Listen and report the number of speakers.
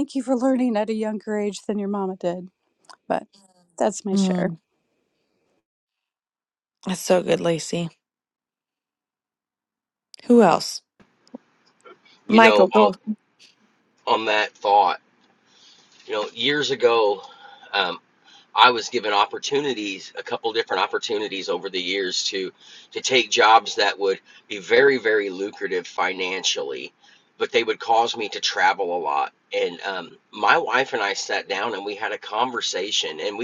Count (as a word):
three